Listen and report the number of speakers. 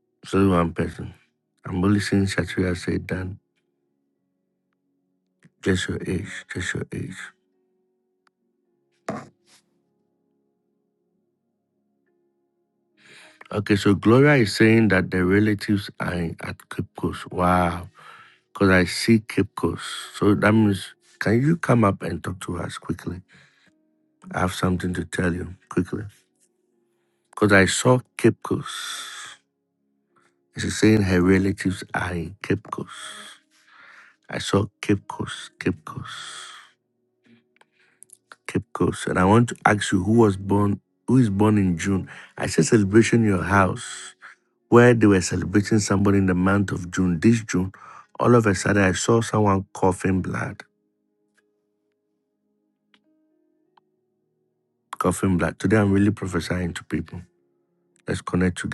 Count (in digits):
1